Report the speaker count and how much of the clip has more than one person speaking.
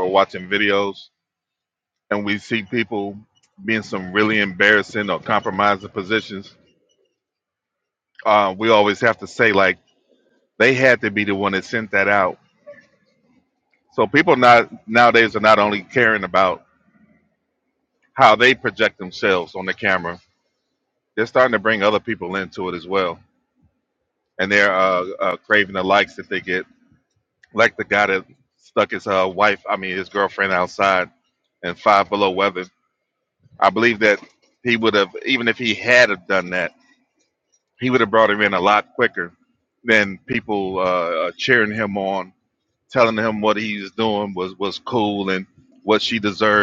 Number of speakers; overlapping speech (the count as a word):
one, no overlap